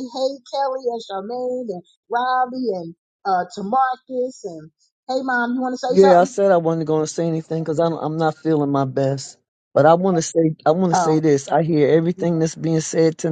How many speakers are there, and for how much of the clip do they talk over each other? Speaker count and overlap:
2, about 5%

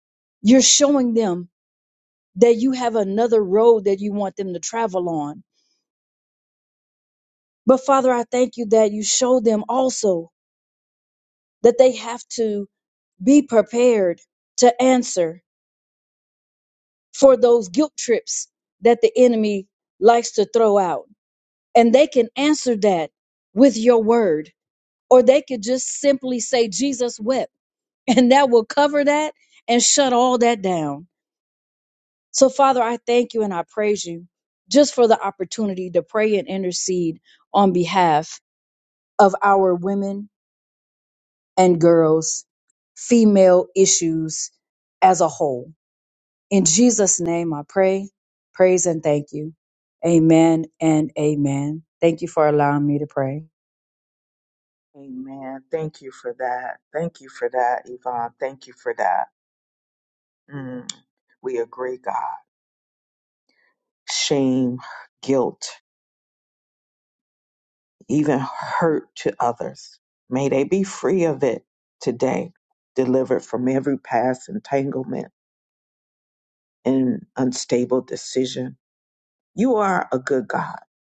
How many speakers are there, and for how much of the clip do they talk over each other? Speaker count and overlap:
2, no overlap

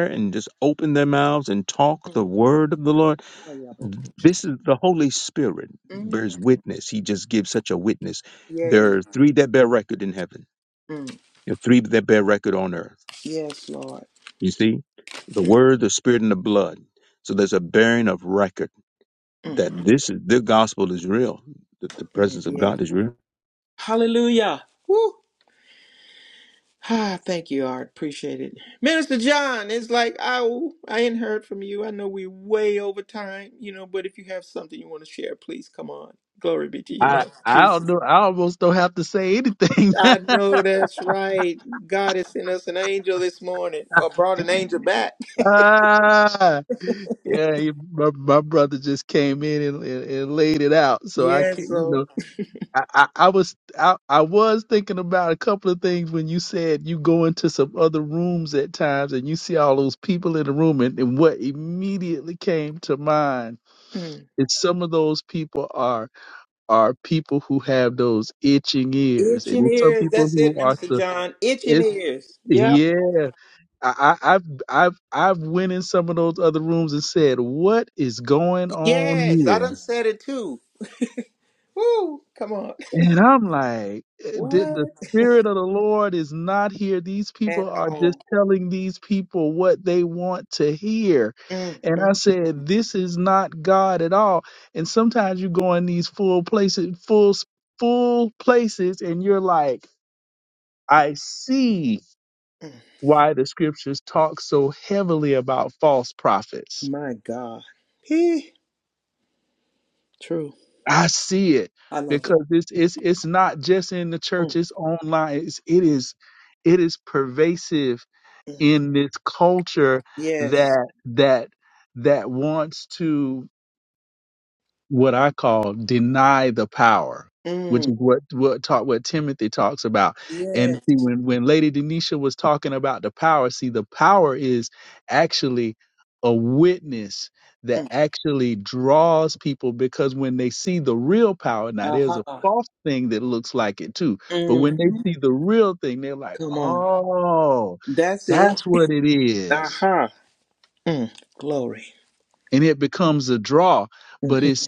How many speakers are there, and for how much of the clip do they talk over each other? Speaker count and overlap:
3, about 8%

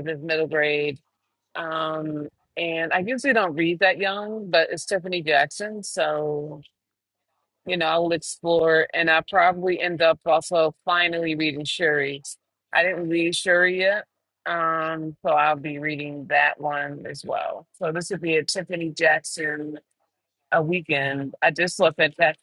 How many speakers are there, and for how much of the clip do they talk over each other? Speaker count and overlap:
1, no overlap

